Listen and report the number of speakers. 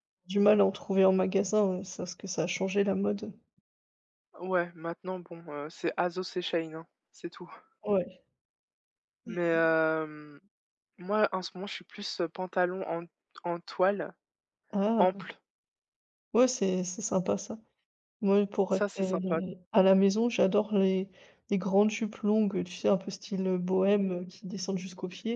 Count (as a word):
two